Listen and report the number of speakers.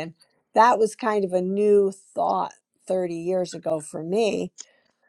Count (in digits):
1